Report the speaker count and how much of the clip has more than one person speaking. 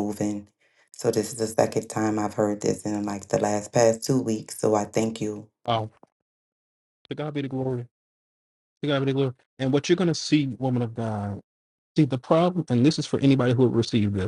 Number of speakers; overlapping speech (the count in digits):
2, no overlap